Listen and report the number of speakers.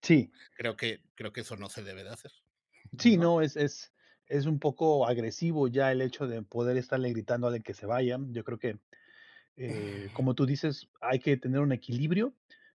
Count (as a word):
two